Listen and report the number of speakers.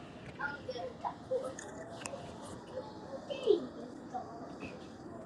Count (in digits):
0